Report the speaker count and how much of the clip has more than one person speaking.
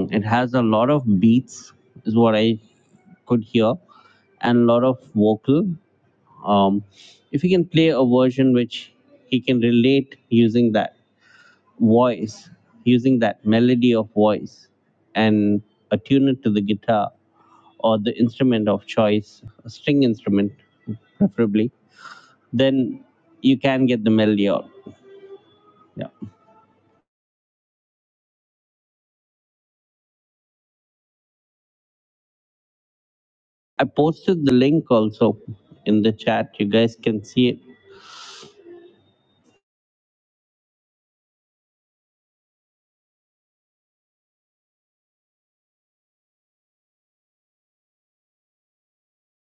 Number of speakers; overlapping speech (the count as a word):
one, no overlap